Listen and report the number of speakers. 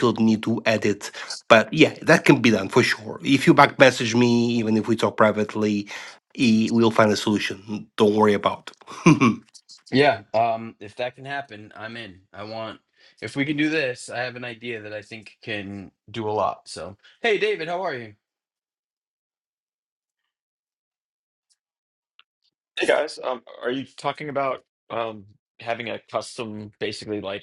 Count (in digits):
3